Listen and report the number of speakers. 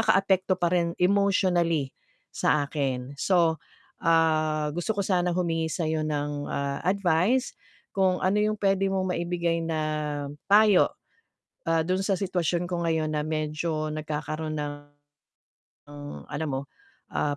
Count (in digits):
1